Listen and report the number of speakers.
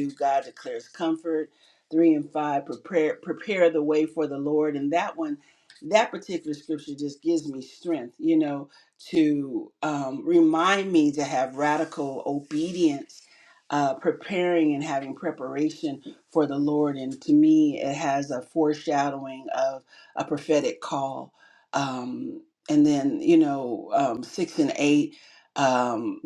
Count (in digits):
1